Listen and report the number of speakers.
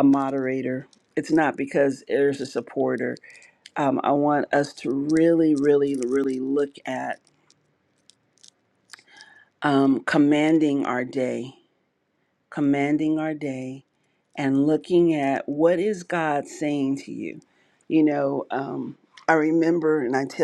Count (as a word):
one